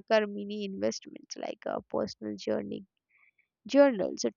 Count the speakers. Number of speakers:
1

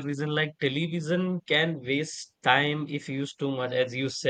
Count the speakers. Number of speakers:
1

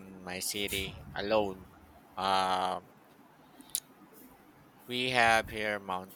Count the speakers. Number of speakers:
1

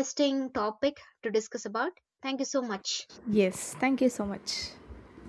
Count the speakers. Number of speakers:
2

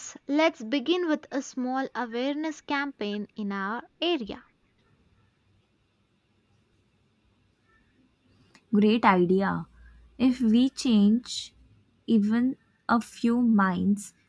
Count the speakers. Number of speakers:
2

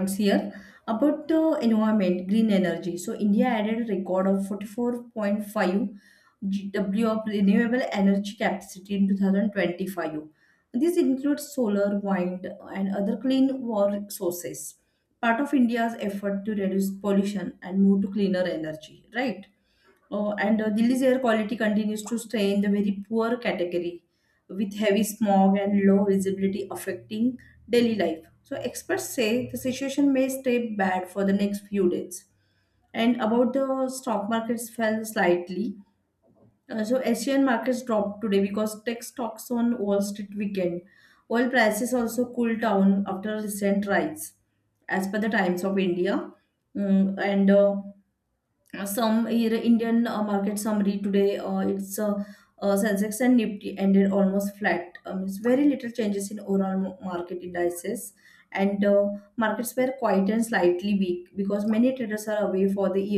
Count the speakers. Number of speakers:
1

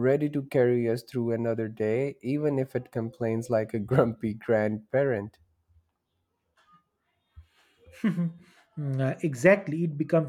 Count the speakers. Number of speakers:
2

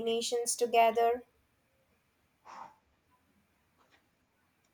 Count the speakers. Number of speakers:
1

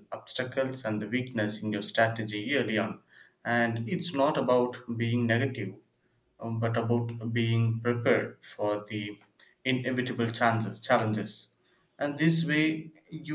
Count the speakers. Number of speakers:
1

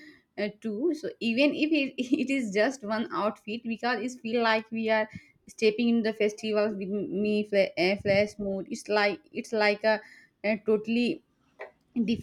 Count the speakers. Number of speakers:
1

